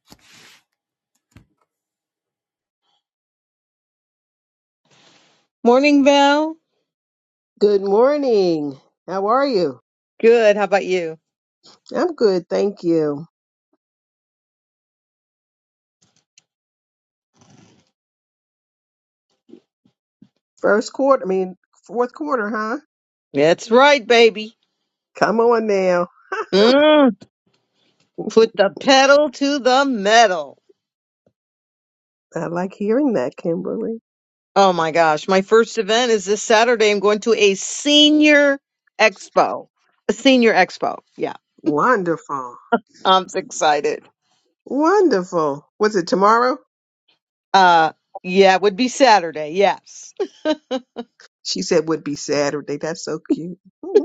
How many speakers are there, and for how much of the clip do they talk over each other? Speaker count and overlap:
2, no overlap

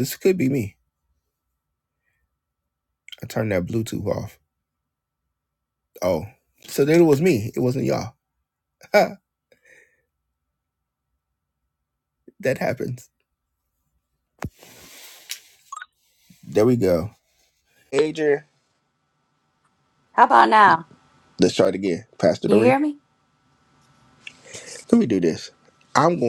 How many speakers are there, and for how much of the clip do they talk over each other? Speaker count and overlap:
2, about 1%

